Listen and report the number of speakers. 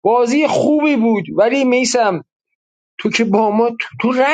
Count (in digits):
1